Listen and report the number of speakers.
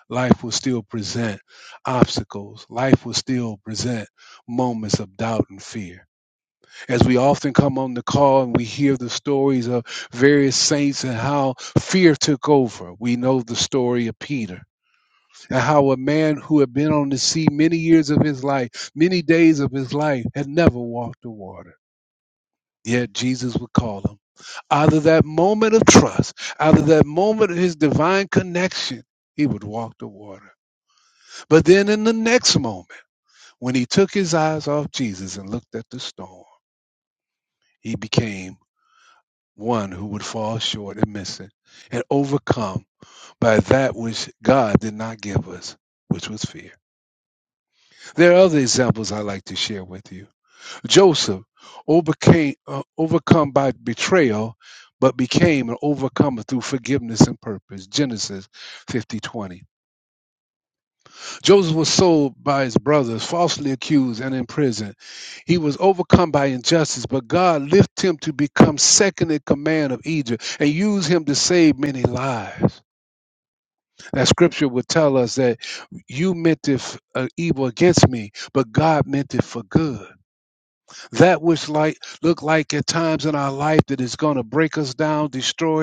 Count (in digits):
1